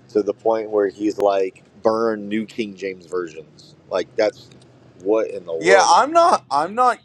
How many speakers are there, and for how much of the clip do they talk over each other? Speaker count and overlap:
two, about 5%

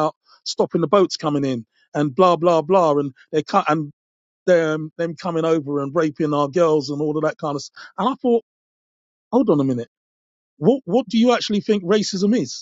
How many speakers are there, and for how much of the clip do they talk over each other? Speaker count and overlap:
one, no overlap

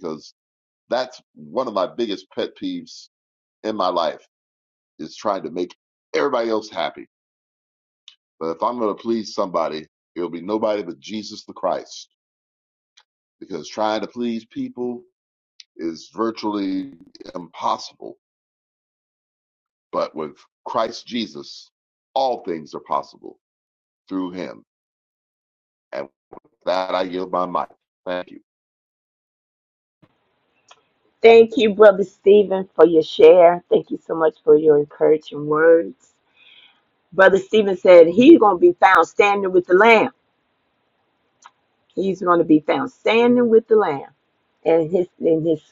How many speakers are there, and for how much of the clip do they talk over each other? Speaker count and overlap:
two, no overlap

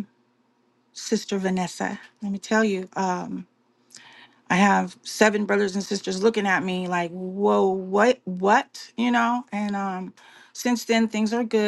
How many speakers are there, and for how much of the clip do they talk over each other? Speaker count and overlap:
one, no overlap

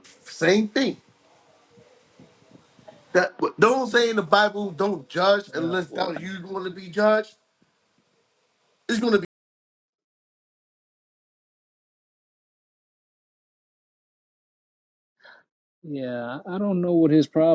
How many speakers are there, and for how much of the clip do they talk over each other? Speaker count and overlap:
two, about 3%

